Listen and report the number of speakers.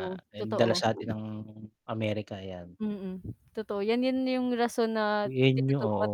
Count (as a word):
two